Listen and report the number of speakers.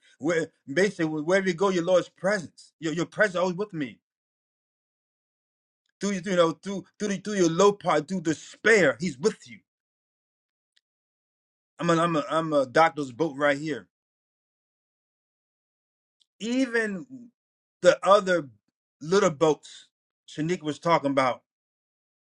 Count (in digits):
1